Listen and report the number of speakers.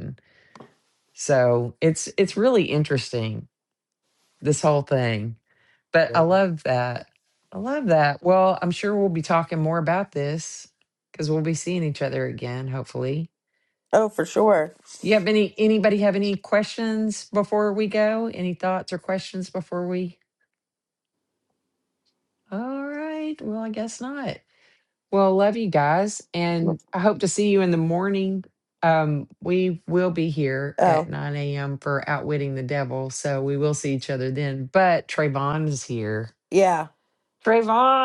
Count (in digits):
2